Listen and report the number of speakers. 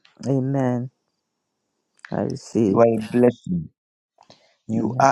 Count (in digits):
2